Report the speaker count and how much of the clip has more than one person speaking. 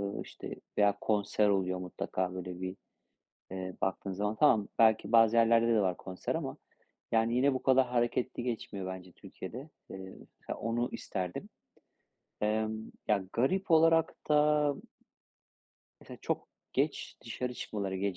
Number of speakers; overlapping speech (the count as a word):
one, no overlap